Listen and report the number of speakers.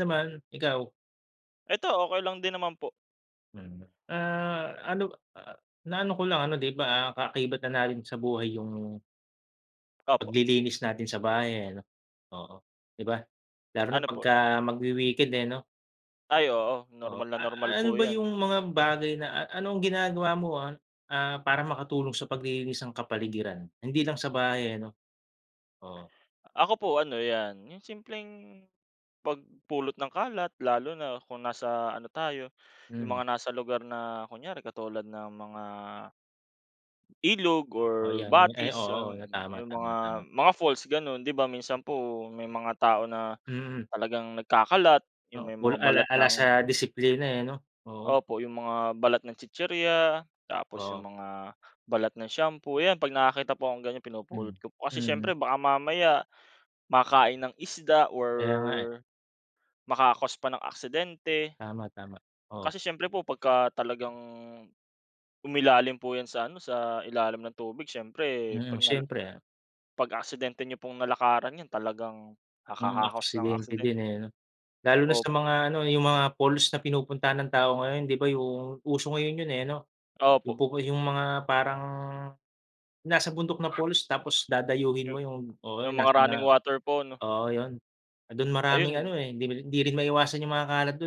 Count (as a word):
two